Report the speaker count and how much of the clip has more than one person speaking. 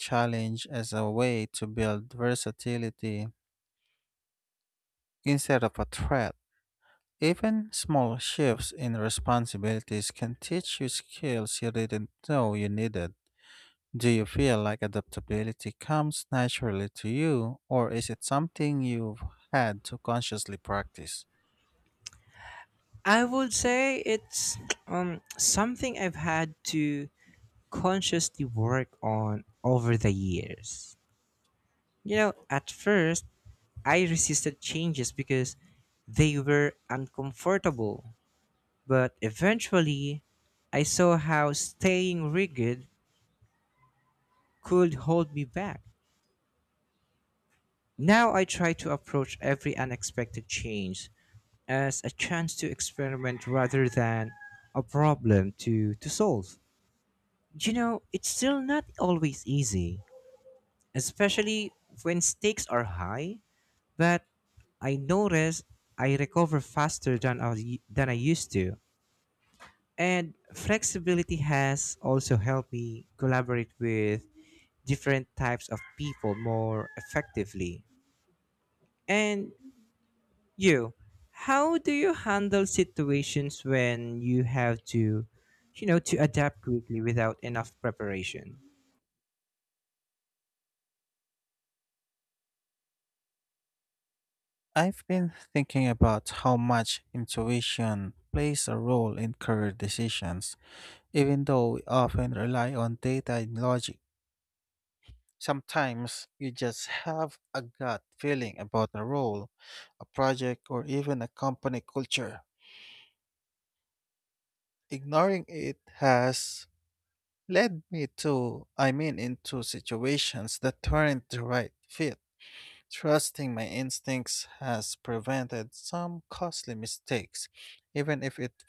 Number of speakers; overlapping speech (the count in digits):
2, no overlap